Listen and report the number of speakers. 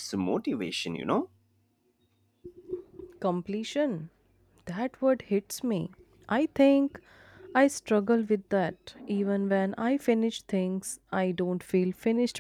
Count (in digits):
2